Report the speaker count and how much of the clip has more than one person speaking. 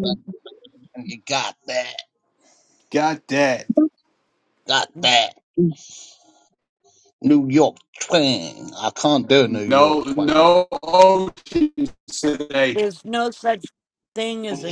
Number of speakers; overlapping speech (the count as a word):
three, about 7%